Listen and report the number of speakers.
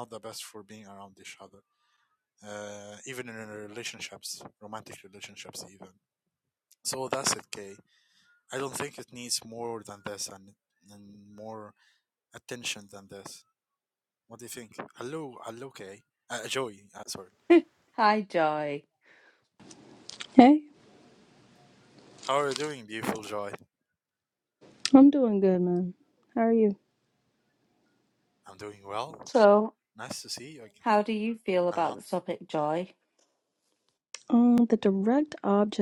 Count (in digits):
3